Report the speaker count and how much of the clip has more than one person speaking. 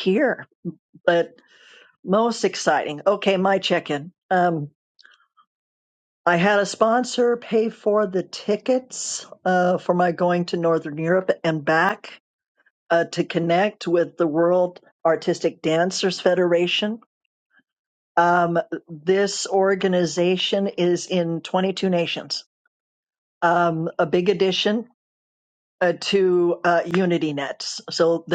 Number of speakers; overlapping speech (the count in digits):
1, no overlap